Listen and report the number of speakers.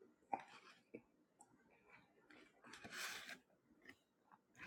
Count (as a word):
zero